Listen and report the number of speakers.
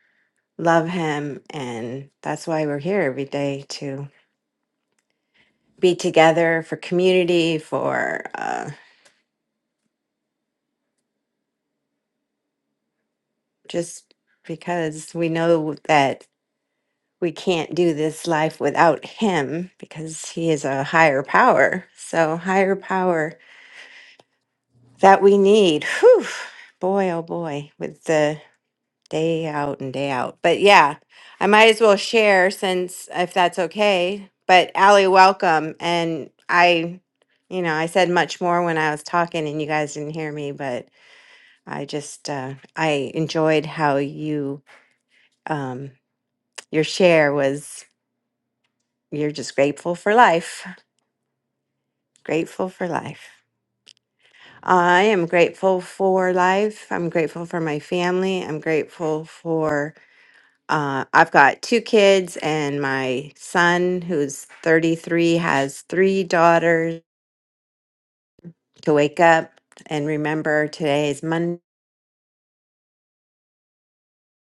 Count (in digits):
1